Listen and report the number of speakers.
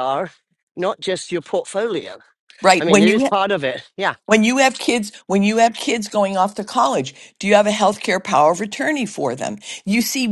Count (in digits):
2